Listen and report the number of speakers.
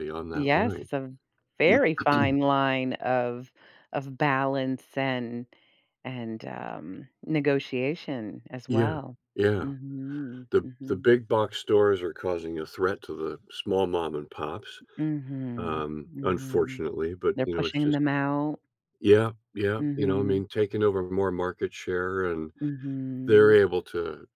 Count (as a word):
two